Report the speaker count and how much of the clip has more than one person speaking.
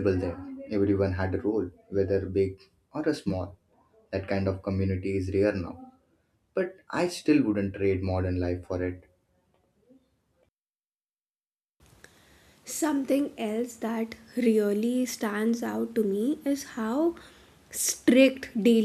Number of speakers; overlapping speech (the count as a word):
two, no overlap